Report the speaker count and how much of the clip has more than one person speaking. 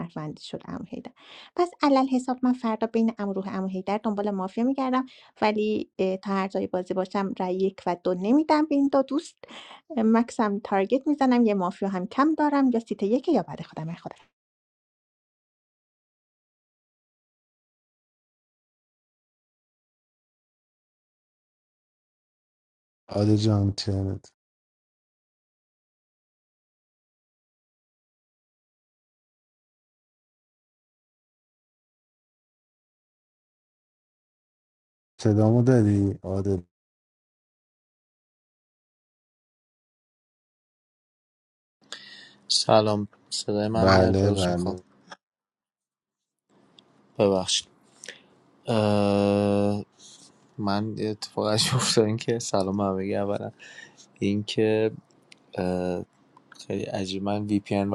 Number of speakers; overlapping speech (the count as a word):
three, about 2%